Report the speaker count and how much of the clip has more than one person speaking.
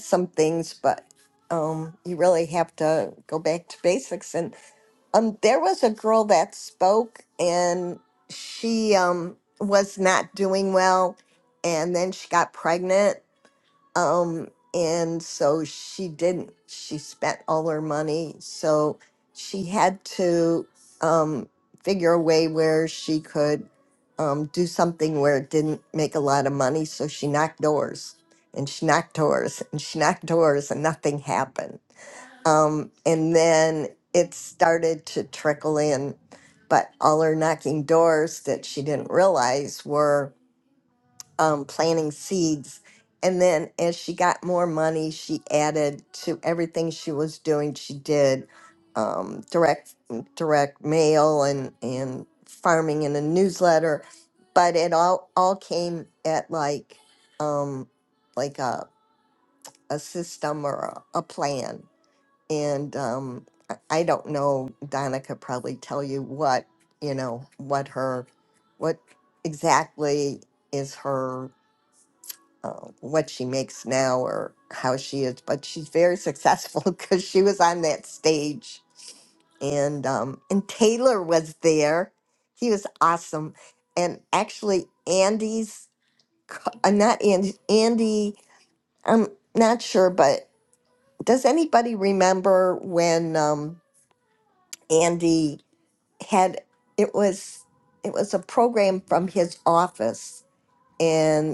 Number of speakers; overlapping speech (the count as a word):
one, no overlap